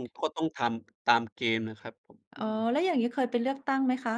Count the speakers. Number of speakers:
two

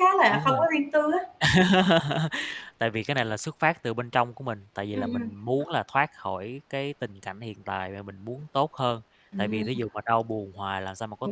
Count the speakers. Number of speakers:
two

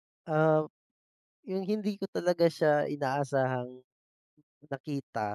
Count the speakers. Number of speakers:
one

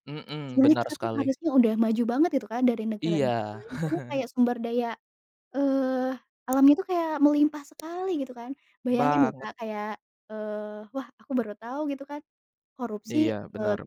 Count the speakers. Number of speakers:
two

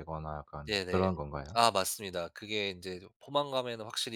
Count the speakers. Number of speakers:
two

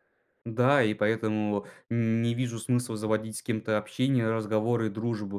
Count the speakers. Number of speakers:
one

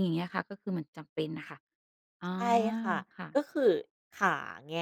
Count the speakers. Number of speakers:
two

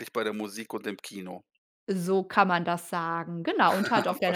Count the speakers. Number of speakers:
two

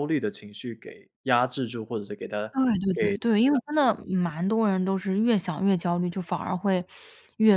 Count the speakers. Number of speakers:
two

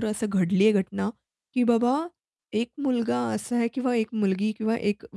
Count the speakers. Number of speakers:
one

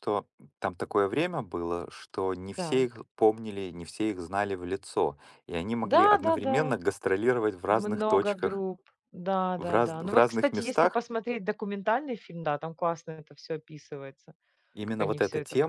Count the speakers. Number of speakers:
two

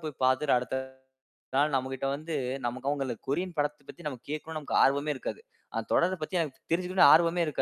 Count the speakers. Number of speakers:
one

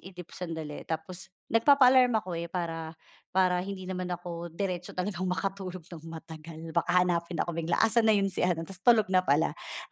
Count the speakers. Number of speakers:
one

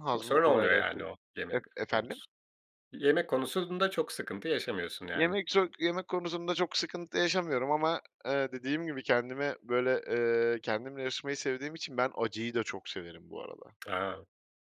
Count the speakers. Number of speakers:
two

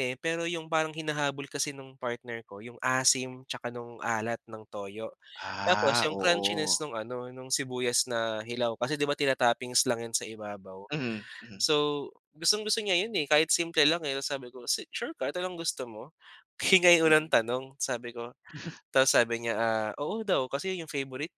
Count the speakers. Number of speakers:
two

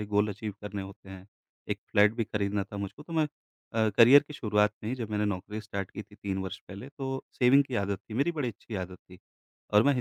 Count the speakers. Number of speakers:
one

